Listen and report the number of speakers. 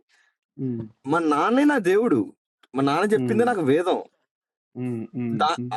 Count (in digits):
2